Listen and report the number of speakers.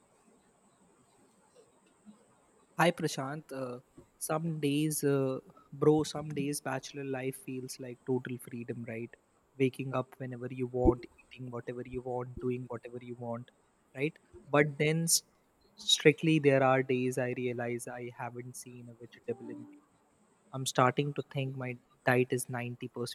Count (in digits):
1